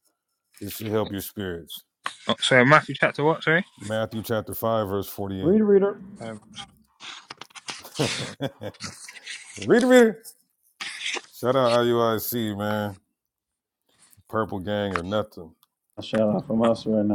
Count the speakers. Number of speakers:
three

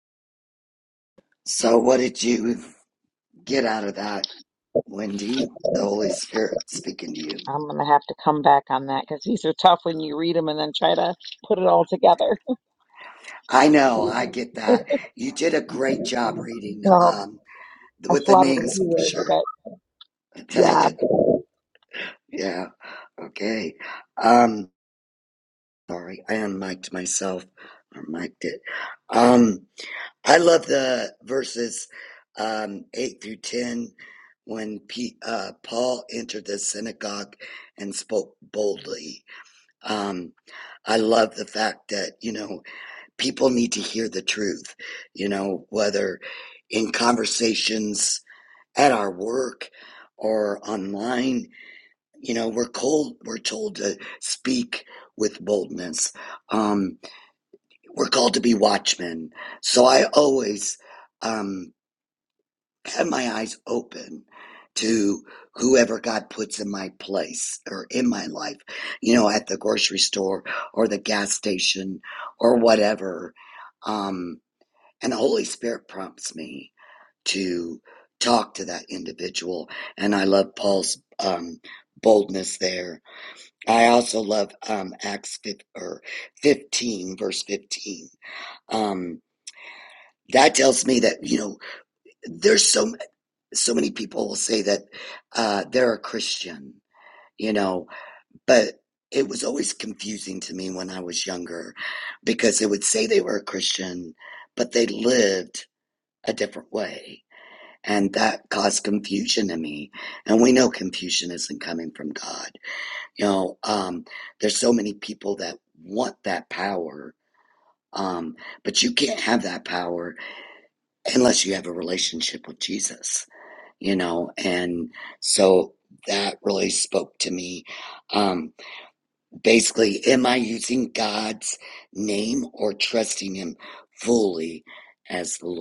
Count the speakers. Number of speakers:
two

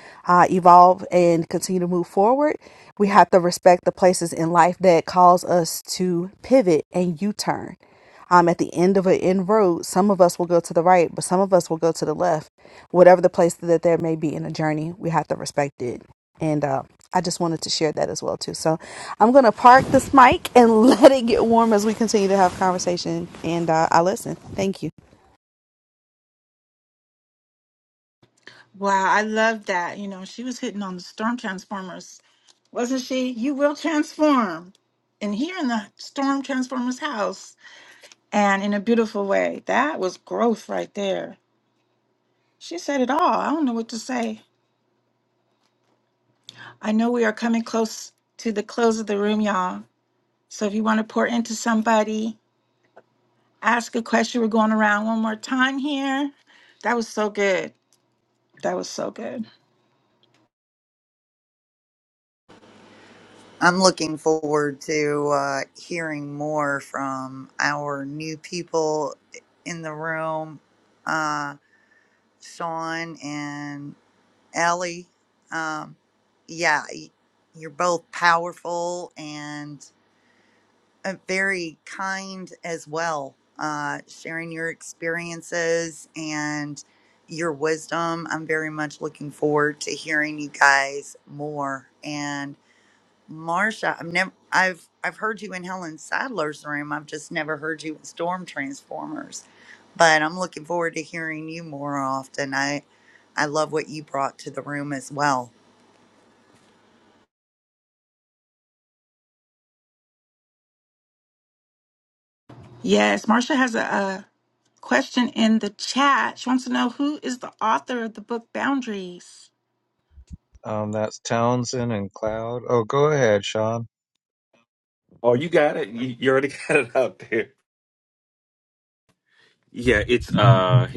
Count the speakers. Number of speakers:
five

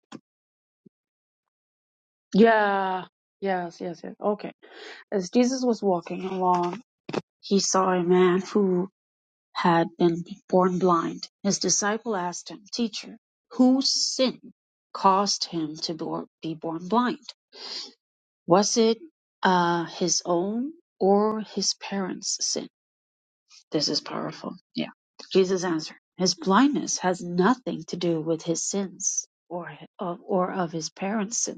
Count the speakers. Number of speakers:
one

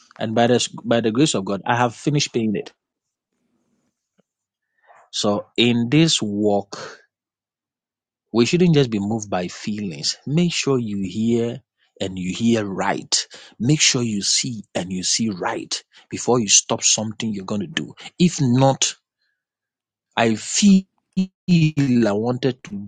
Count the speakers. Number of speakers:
one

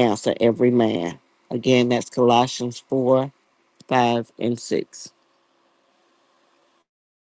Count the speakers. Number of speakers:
one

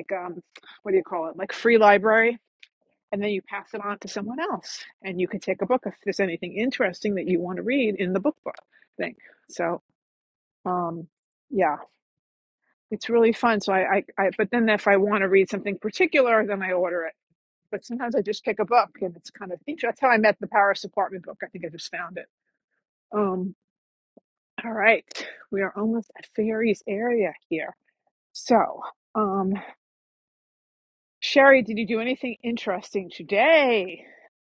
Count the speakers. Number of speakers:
one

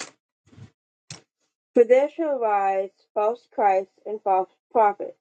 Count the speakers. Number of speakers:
one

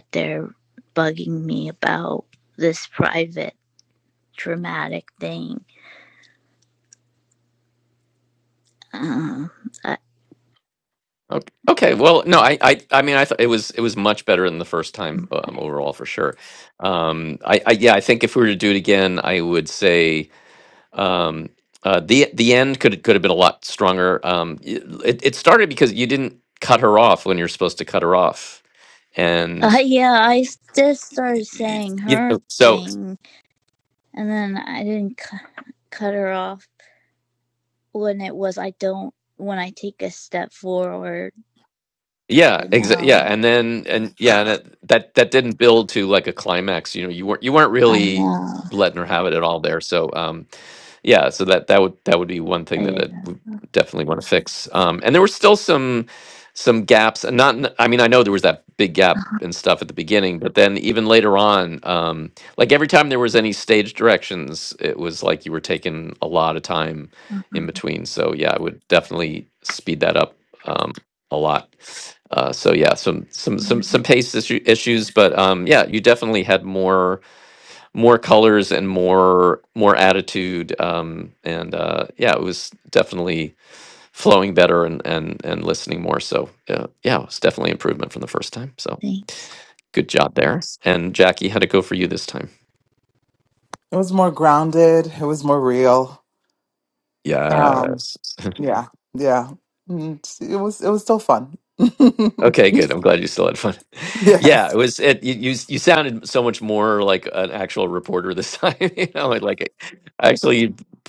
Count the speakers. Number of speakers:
three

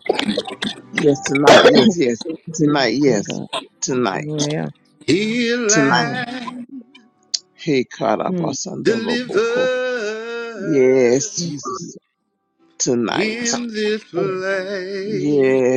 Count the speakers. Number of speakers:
three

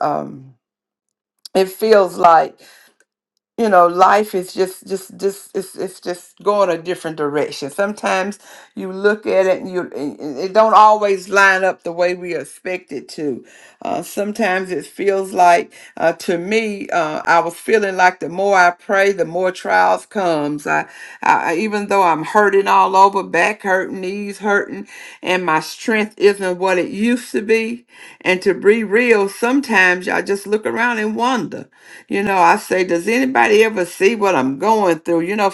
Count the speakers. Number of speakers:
one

